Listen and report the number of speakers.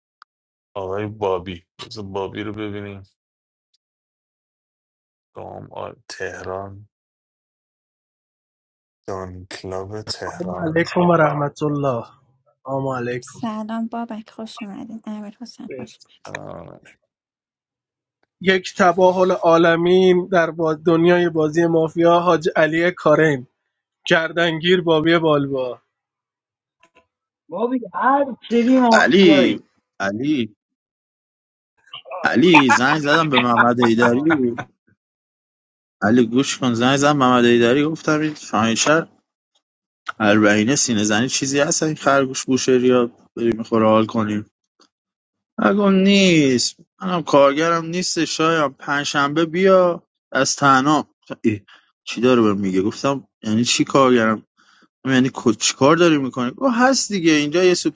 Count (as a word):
five